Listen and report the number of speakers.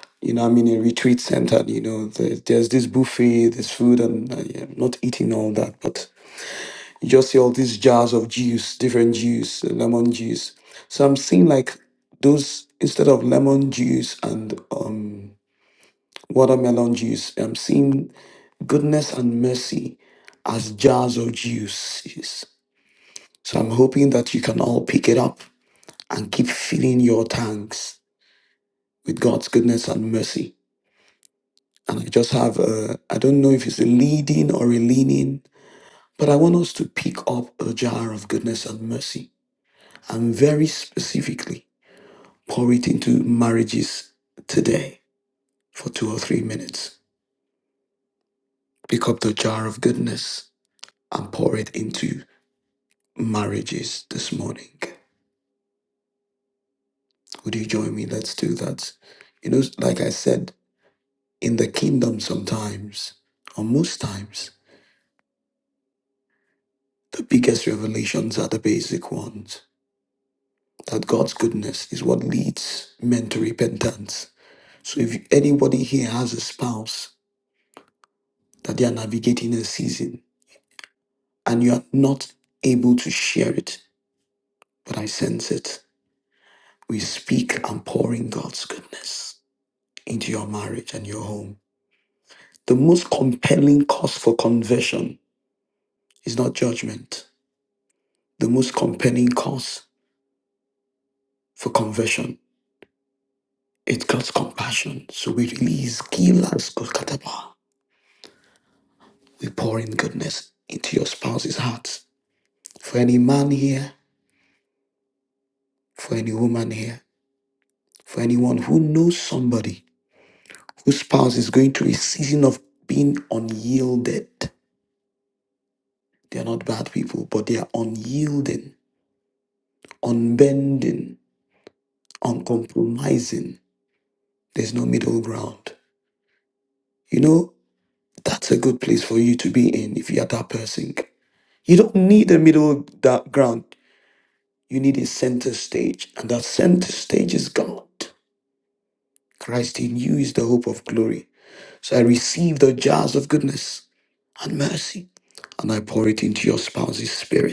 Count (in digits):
1